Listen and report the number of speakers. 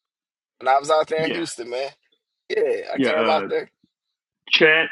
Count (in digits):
2